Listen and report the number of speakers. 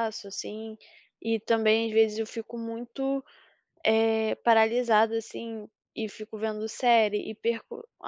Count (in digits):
1